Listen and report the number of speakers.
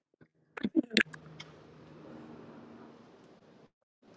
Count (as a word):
zero